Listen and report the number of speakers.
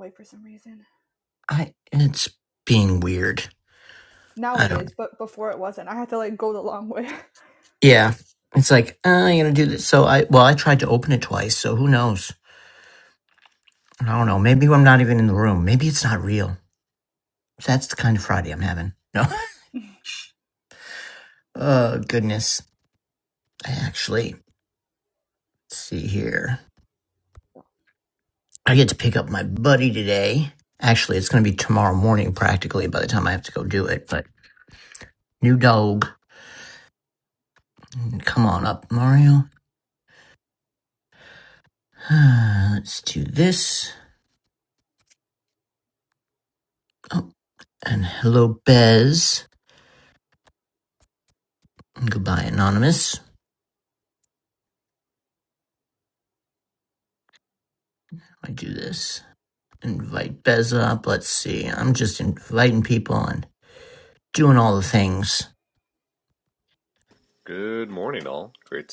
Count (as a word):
three